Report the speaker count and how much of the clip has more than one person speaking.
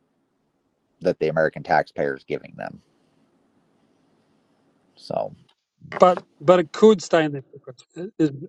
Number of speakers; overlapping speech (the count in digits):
2, no overlap